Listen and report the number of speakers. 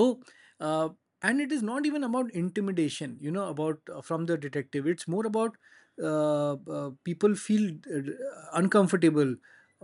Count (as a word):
one